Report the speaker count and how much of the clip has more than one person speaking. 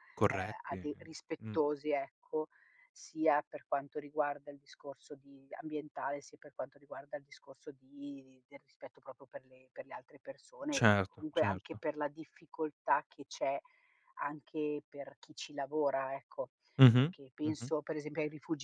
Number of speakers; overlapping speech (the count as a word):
two, about 11%